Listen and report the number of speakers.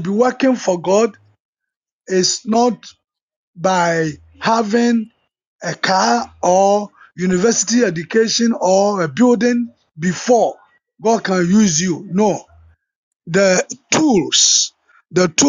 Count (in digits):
1